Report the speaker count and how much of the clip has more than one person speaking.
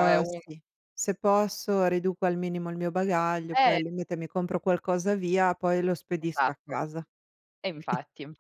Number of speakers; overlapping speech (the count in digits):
2, about 15%